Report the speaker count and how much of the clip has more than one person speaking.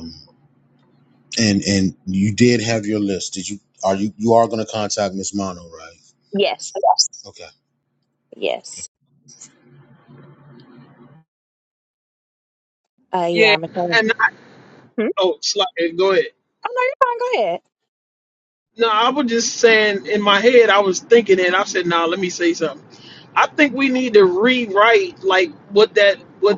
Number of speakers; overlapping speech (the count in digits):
3, about 1%